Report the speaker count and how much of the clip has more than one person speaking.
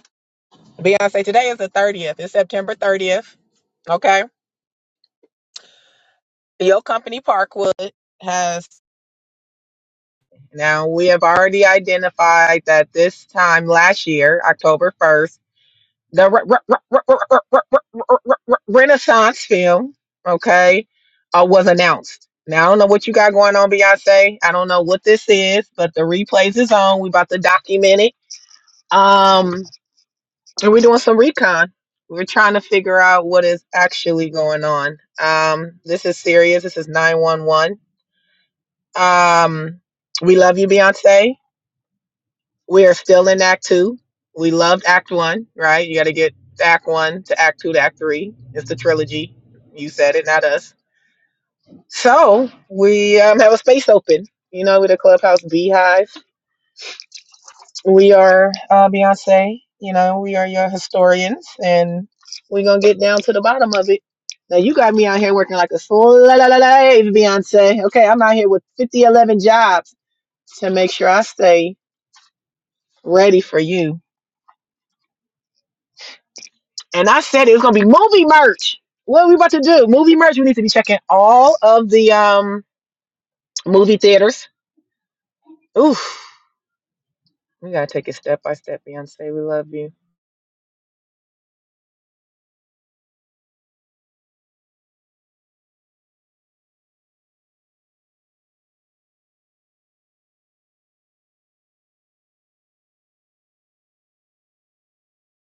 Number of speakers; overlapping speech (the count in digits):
1, no overlap